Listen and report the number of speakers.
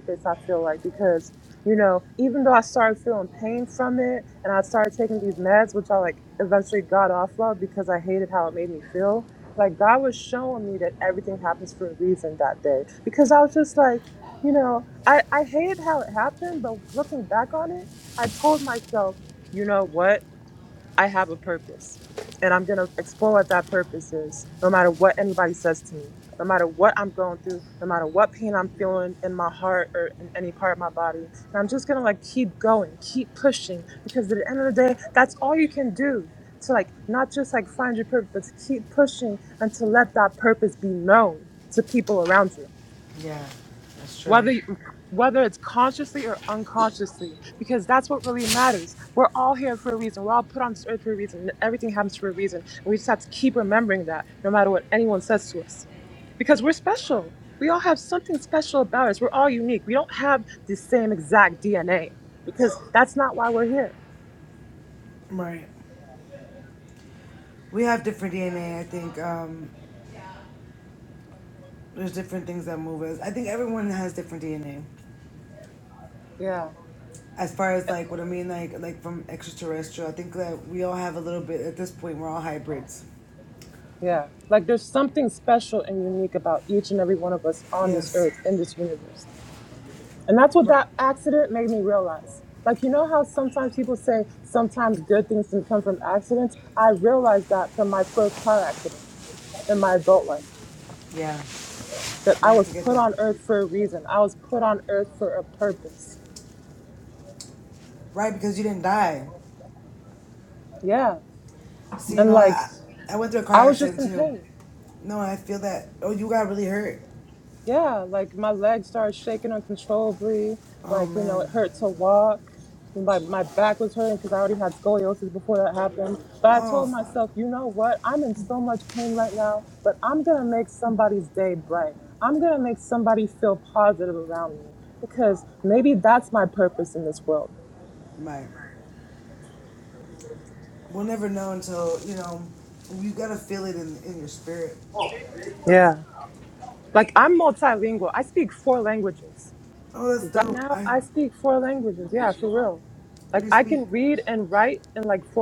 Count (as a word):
two